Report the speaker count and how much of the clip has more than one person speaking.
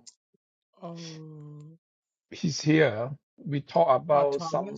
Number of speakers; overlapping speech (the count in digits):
2, about 14%